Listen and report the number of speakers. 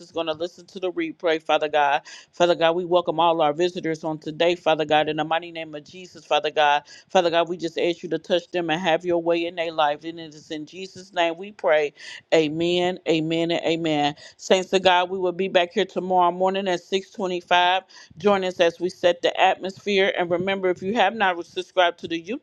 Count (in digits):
1